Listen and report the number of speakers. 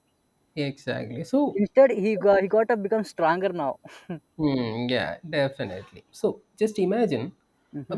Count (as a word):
two